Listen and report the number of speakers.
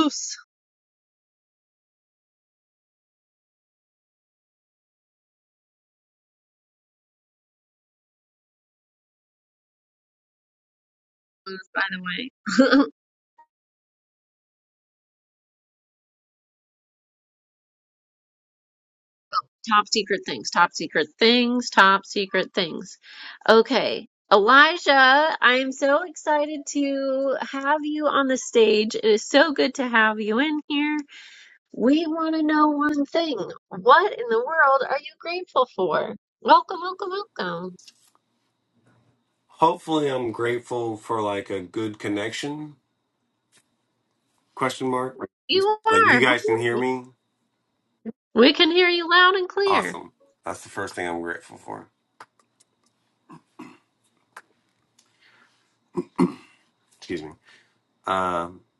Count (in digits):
2